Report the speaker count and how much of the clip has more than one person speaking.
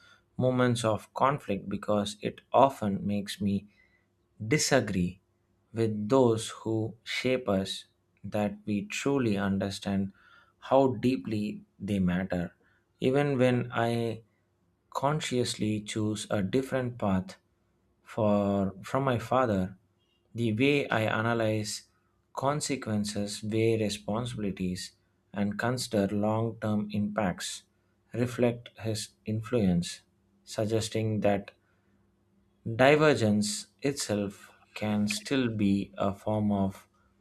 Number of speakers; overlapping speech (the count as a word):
one, no overlap